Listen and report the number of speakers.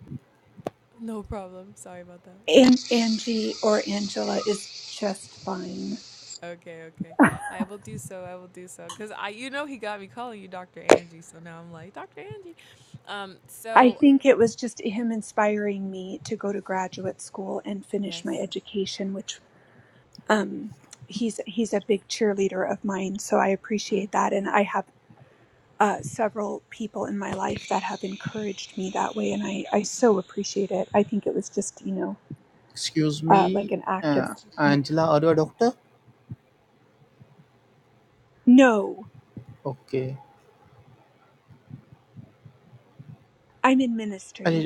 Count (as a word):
three